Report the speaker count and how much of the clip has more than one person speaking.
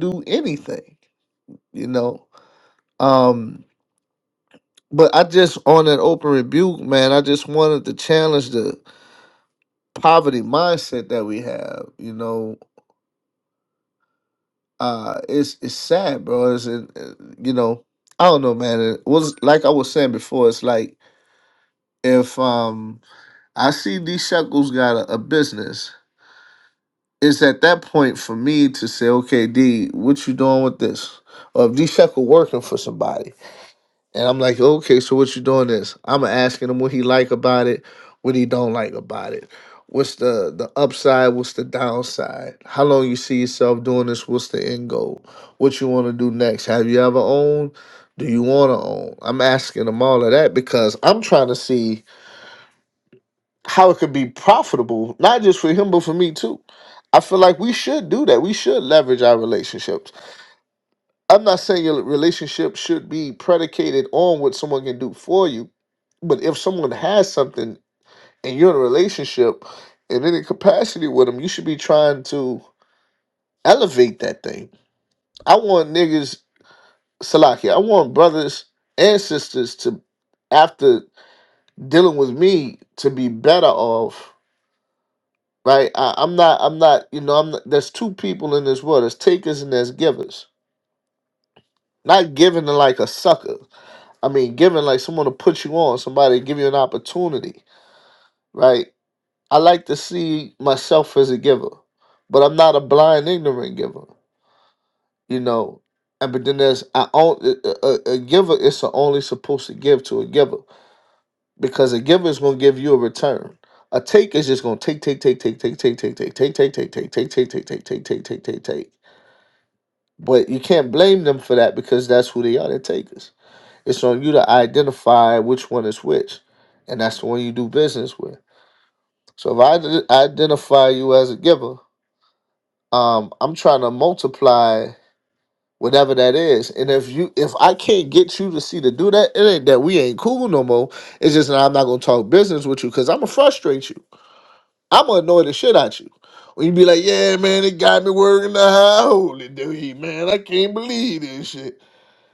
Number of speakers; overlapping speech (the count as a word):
one, no overlap